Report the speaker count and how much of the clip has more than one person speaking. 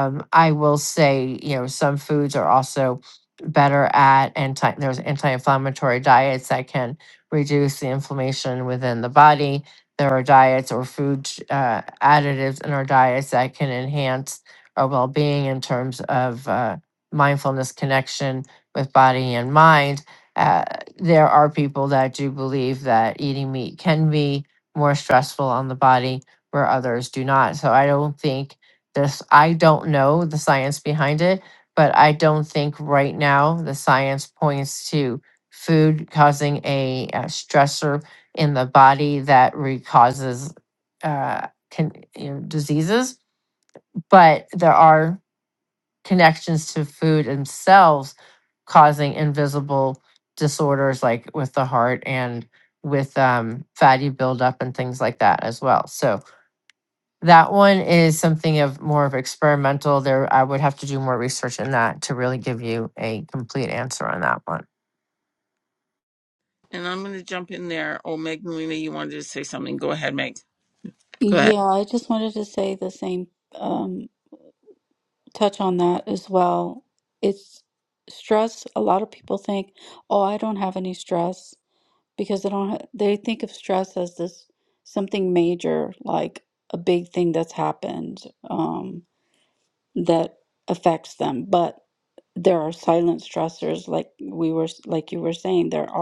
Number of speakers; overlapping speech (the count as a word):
three, under 1%